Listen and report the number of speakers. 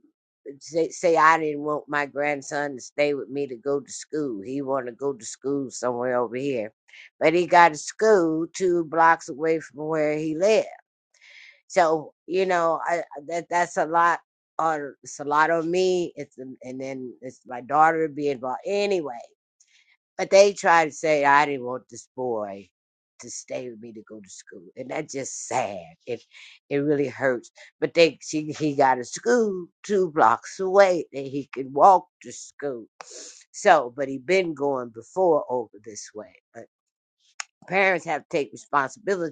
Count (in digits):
1